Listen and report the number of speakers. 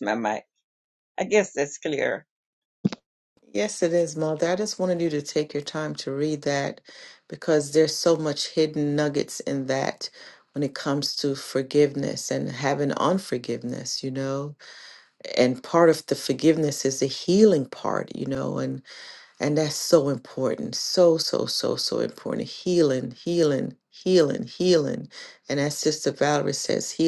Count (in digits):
2